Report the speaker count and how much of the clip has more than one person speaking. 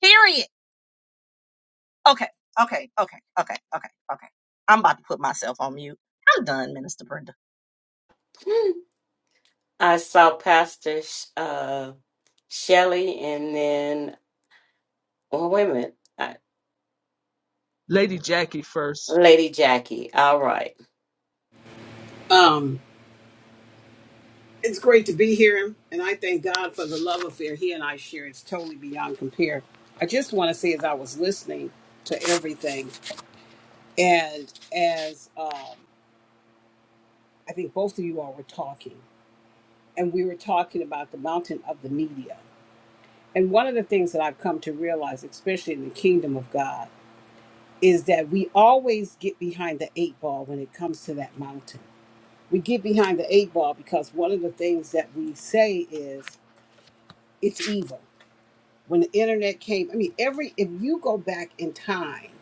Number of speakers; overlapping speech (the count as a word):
four, under 1%